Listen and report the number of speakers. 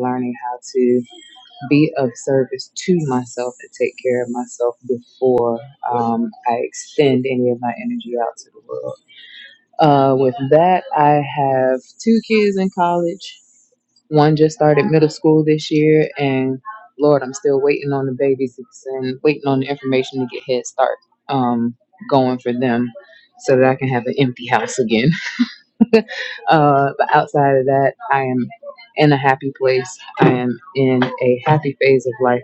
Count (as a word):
one